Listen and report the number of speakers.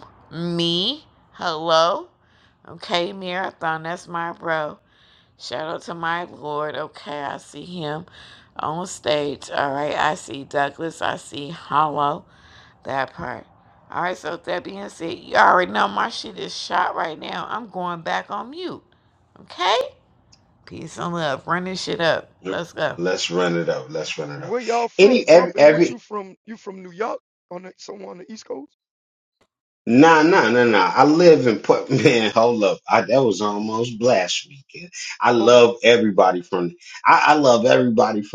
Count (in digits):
3